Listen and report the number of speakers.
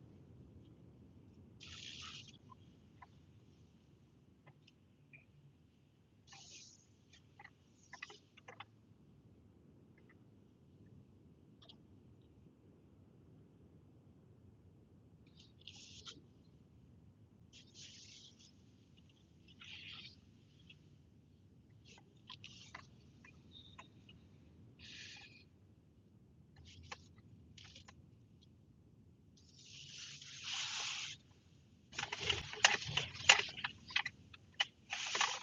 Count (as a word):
zero